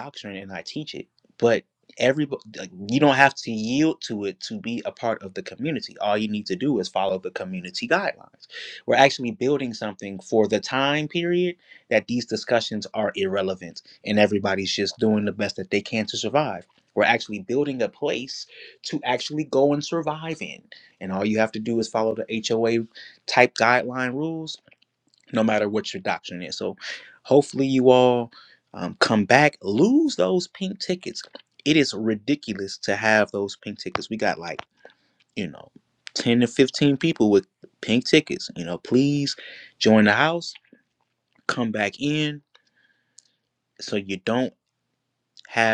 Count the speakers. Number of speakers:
one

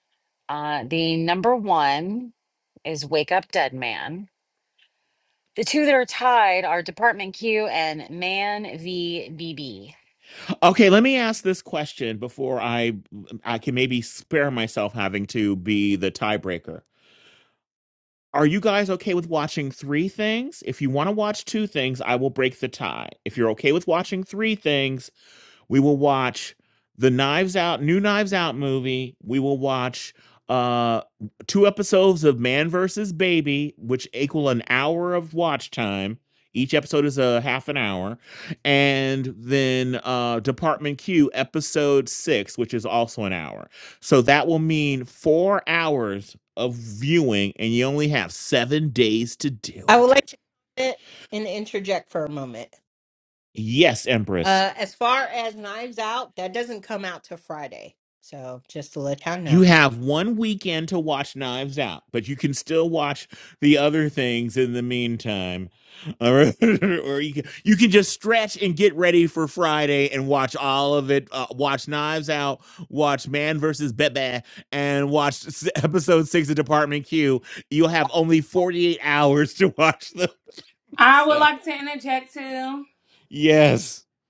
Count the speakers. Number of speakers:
four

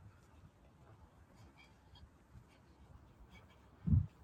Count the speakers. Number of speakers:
zero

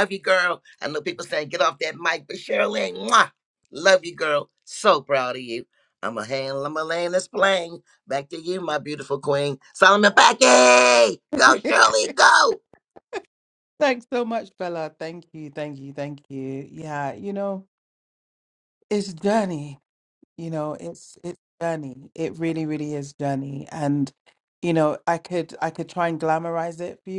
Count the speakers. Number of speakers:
two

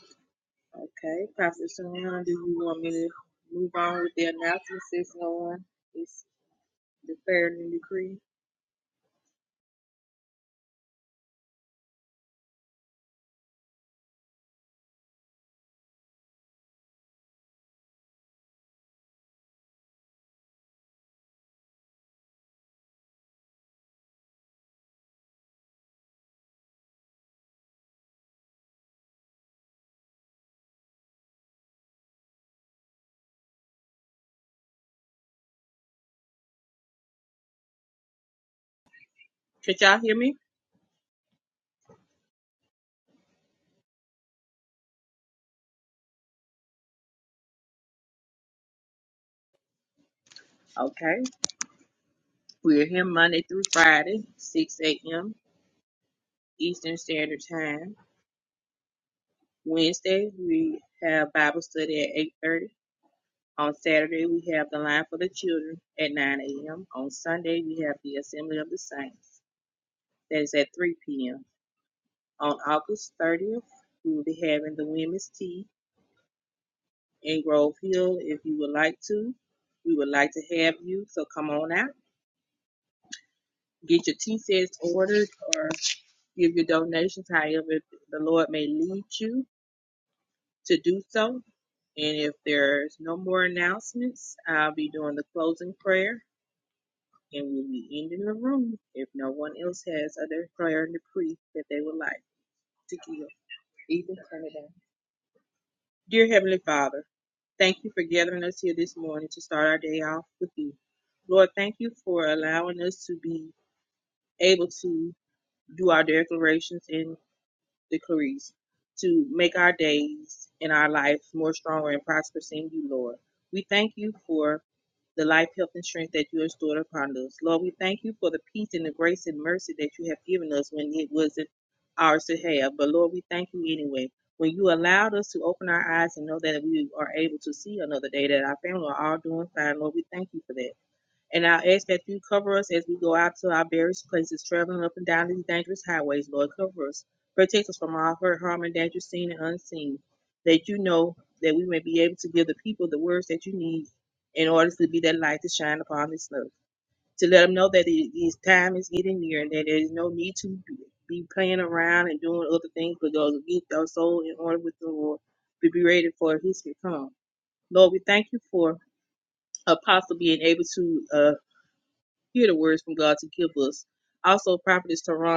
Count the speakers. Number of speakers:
one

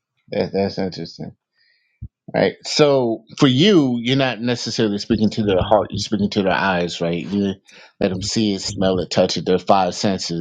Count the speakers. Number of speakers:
one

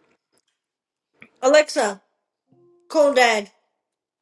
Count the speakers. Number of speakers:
one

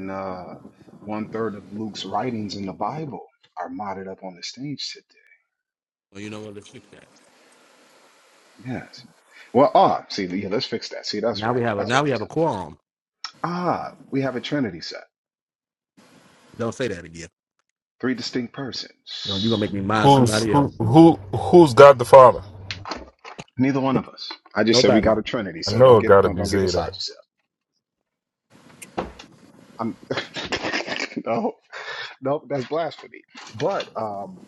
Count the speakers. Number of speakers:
three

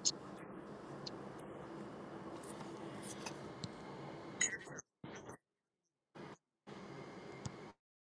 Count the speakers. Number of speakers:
zero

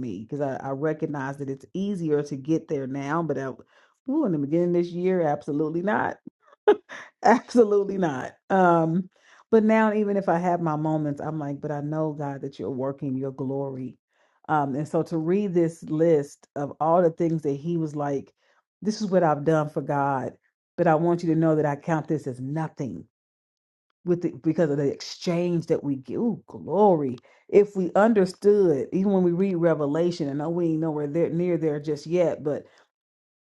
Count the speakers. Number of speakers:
one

